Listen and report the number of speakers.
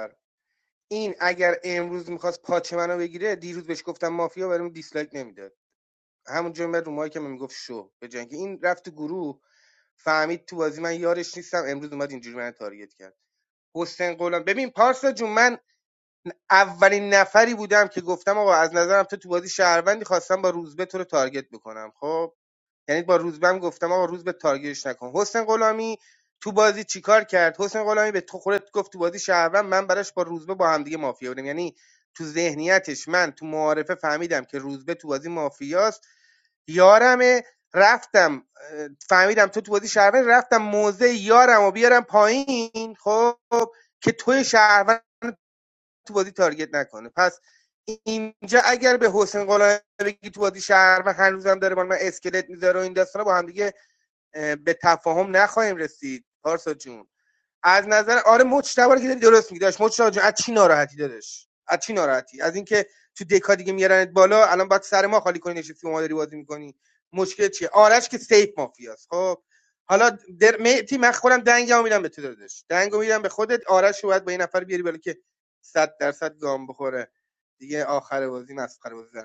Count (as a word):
one